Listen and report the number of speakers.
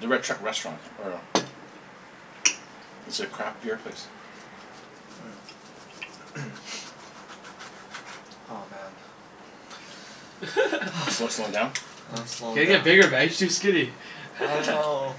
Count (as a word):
three